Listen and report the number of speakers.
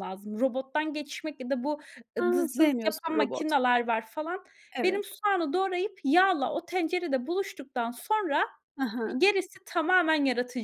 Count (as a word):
two